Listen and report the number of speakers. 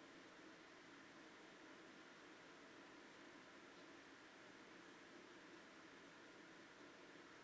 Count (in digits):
0